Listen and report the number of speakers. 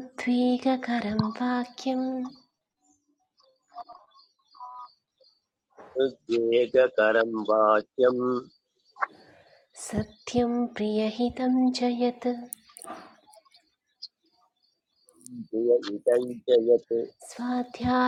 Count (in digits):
2